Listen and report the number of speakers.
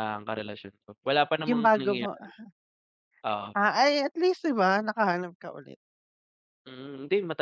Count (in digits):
2